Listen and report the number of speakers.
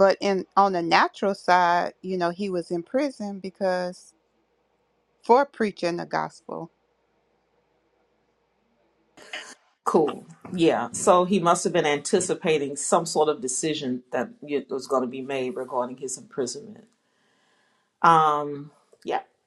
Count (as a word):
two